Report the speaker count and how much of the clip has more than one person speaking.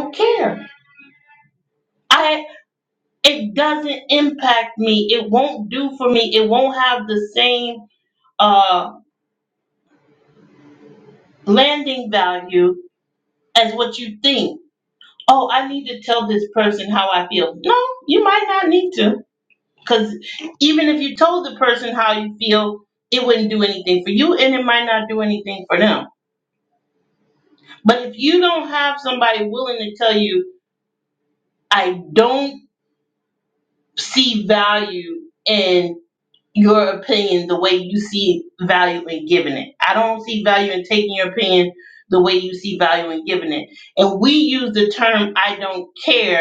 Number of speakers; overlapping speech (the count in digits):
1, no overlap